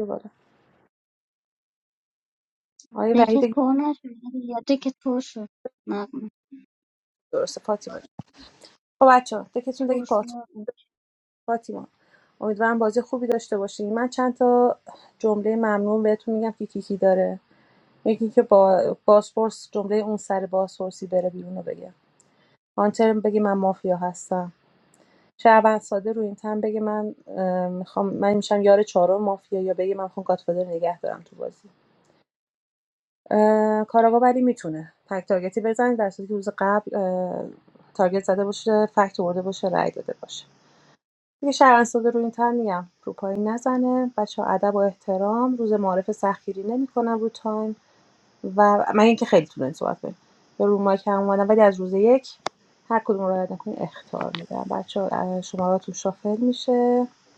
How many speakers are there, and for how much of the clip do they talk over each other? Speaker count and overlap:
two, about 1%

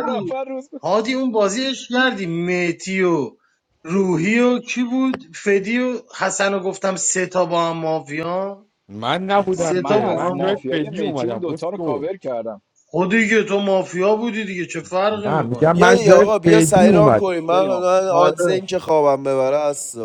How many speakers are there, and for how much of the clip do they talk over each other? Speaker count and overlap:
four, about 29%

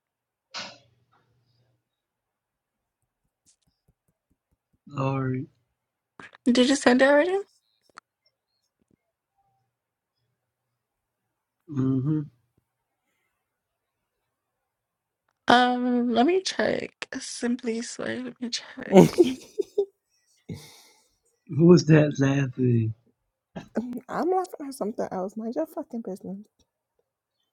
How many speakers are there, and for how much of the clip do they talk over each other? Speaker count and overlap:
three, no overlap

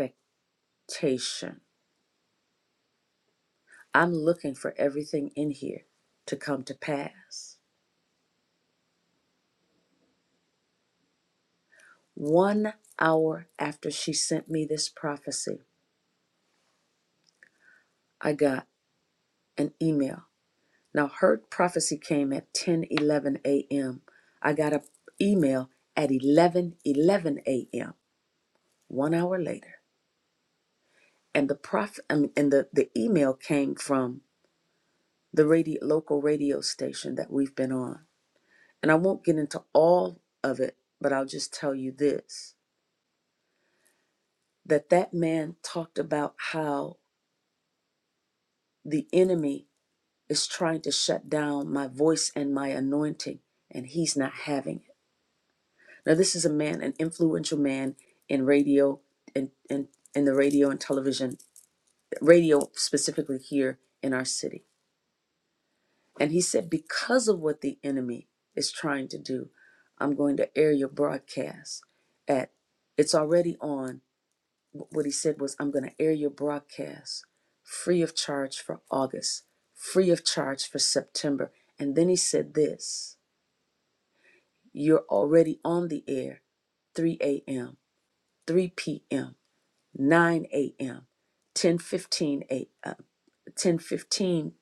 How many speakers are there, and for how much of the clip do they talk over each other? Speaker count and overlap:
one, no overlap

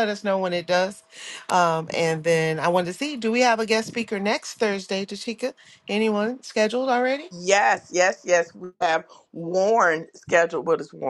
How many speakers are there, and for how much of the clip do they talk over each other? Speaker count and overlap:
two, no overlap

